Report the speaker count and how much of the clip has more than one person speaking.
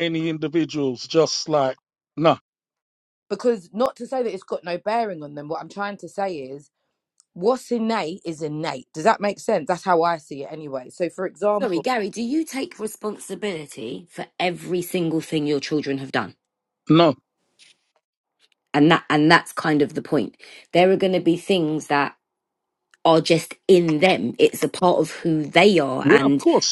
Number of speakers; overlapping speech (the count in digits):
3, about 2%